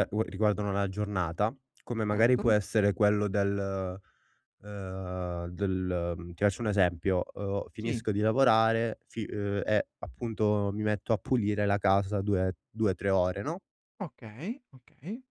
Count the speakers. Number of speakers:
two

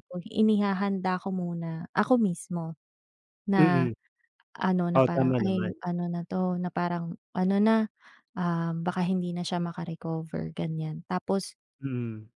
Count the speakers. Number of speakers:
two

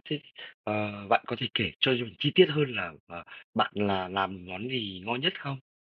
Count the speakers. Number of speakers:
one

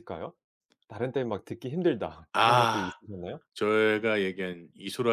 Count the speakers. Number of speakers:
two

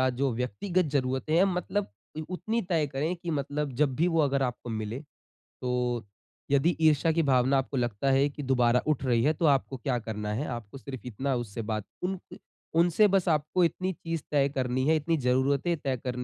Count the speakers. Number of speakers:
one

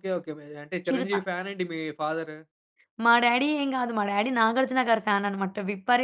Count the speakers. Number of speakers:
two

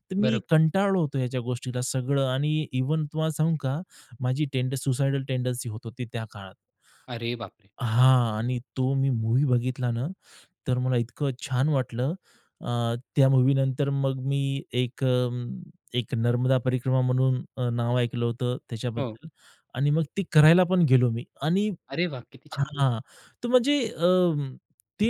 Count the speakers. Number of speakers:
two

